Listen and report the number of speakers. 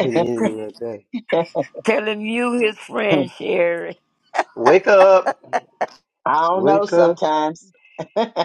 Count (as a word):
three